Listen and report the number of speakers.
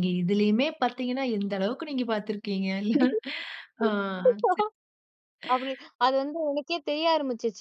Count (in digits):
2